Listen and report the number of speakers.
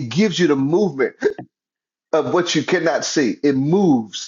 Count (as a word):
one